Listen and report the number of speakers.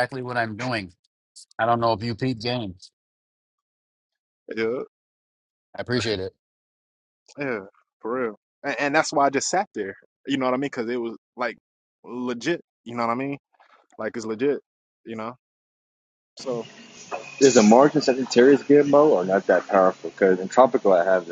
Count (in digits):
3